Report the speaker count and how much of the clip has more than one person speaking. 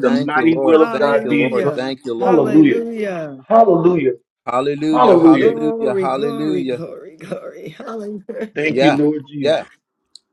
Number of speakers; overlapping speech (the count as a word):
three, about 45%